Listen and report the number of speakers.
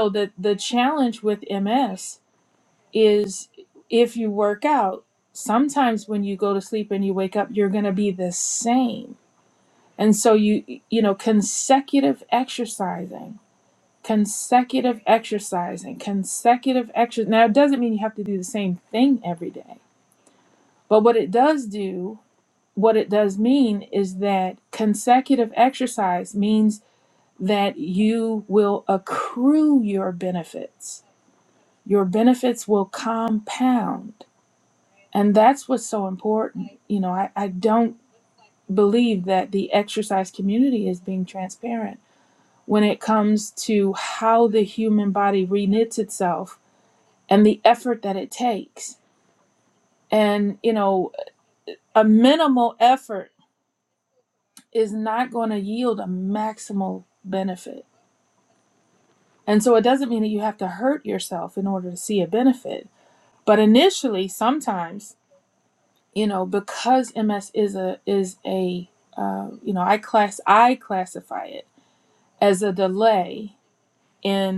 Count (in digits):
1